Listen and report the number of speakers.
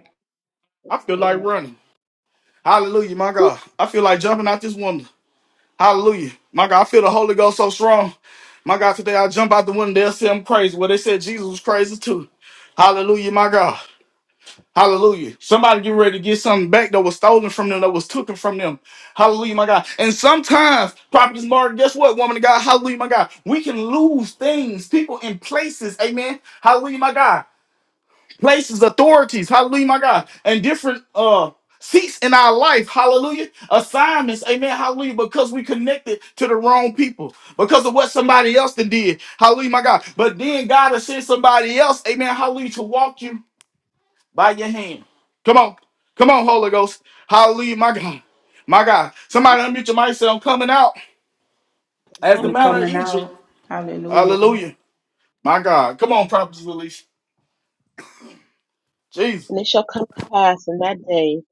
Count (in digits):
3